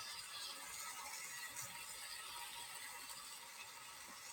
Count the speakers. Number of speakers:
0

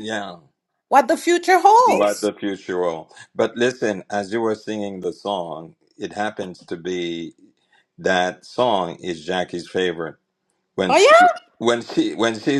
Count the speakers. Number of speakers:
2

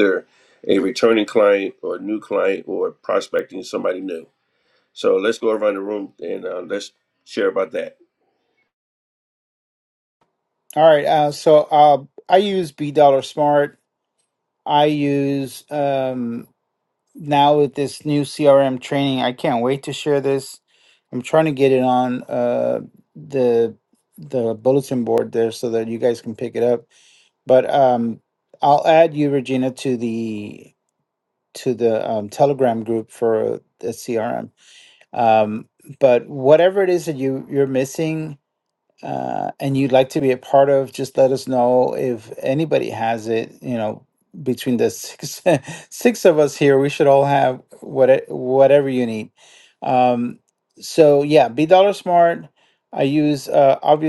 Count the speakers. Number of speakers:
2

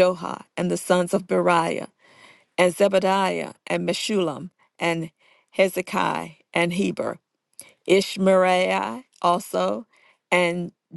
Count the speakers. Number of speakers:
1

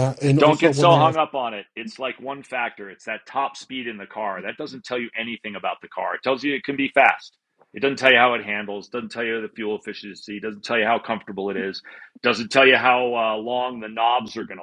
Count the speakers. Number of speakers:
2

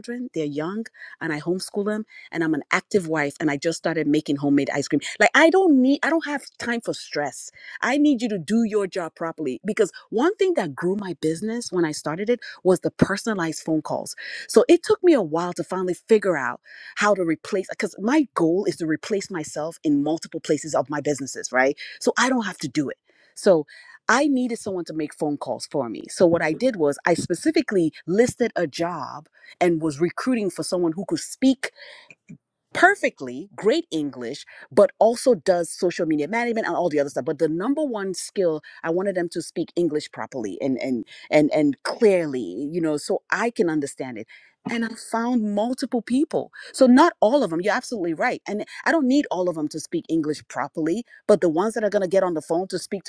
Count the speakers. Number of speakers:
1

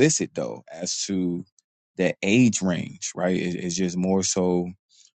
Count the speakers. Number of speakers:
1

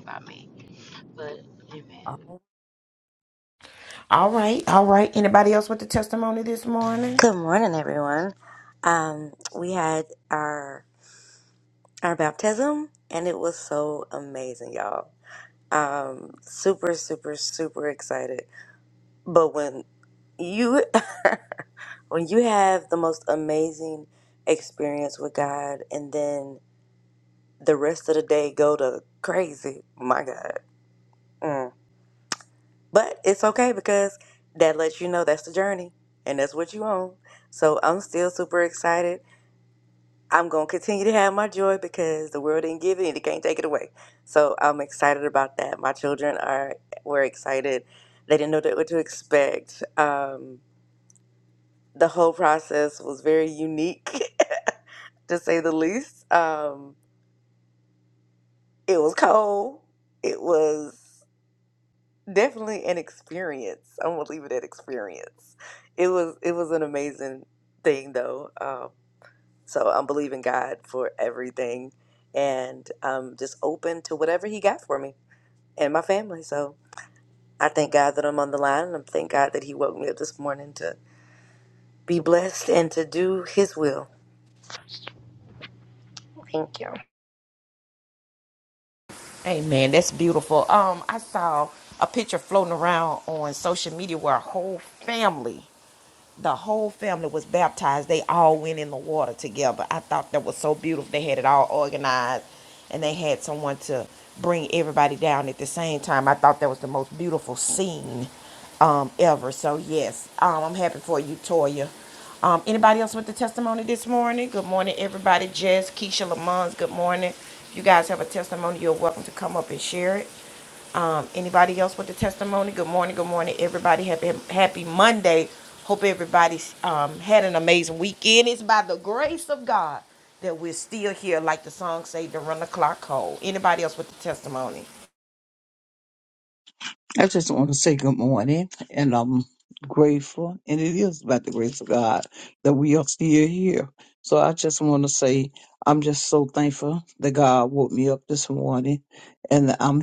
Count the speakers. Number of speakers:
4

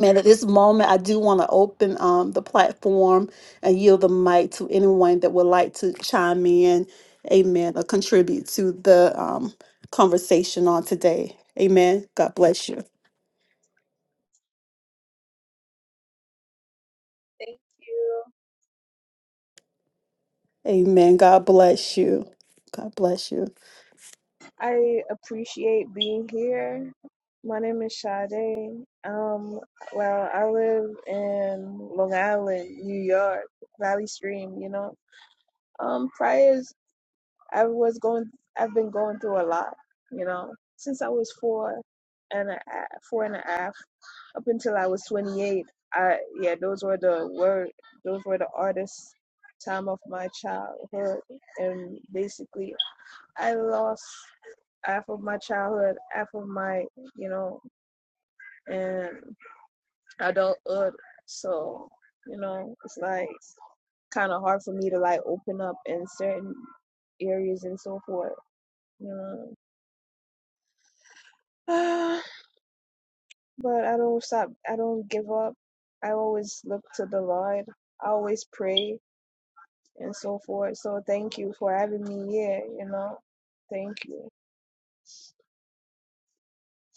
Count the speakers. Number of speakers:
2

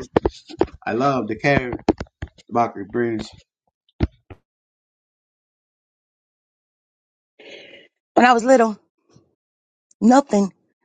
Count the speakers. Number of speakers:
2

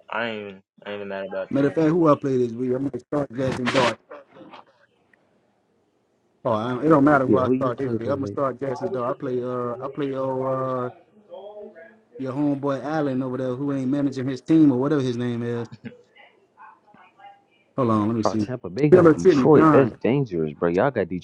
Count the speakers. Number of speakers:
3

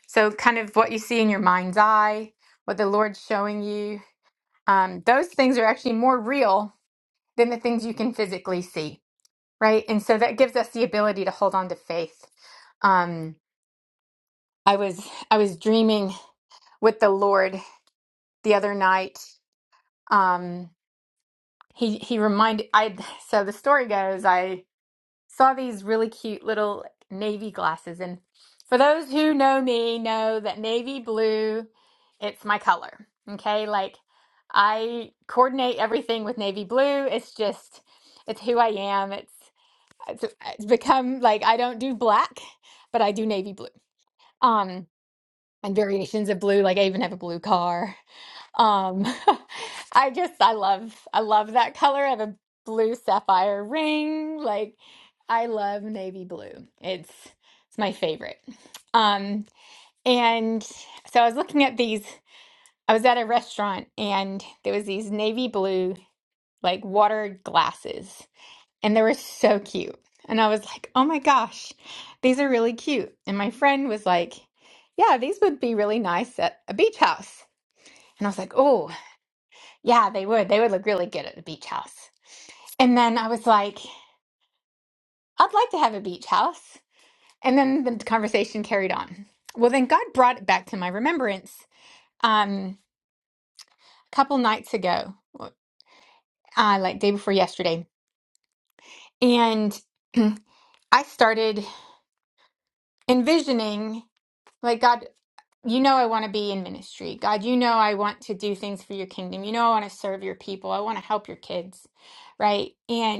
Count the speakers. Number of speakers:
1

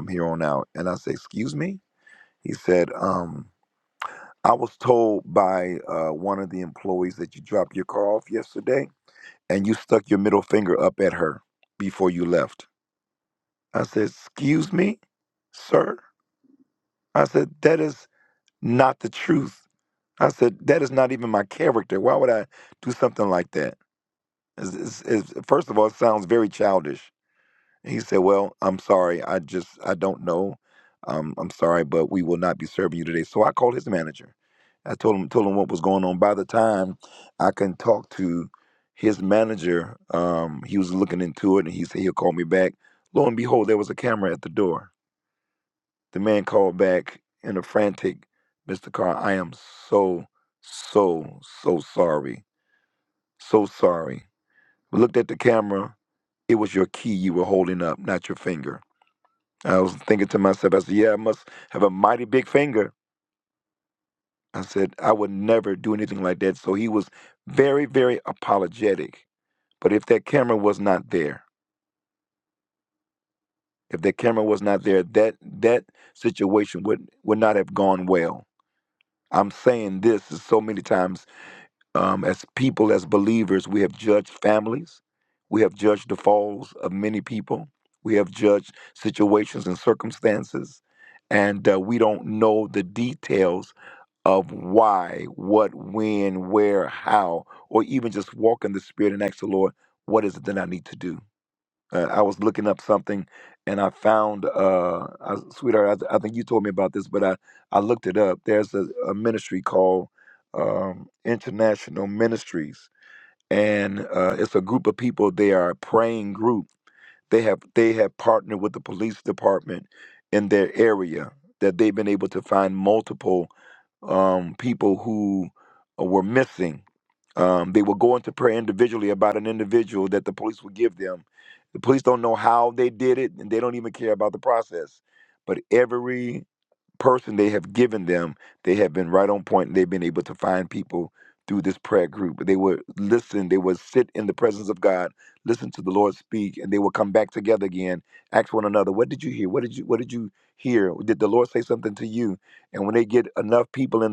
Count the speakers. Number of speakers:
1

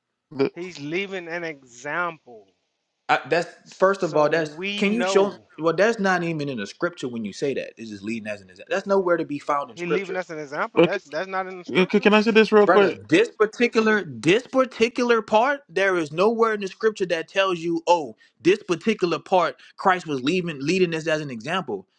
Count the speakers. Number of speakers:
3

